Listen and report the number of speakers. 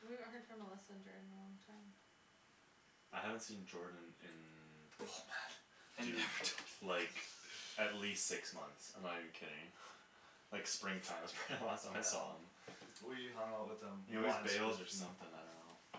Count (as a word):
three